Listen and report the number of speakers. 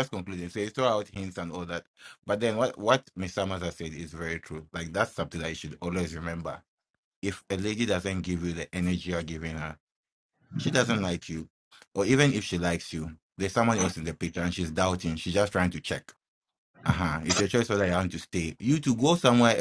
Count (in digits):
1